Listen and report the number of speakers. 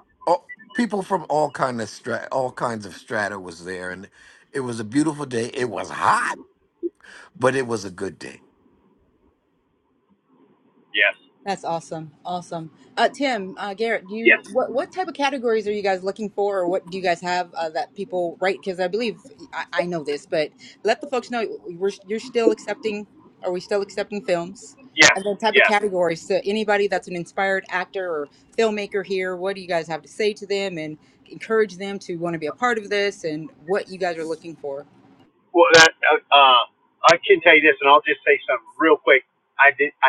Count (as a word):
three